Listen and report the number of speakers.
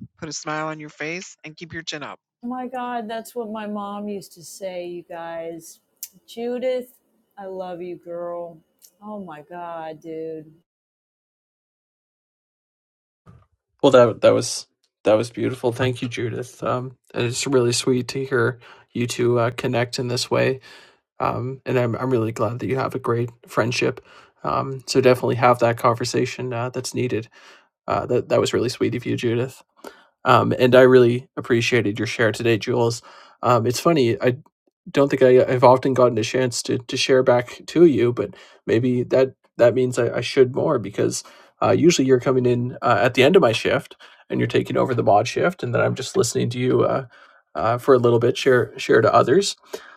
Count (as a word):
three